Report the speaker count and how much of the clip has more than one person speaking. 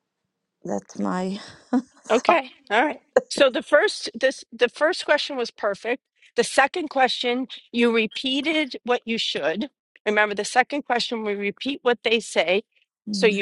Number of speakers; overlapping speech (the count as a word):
two, about 3%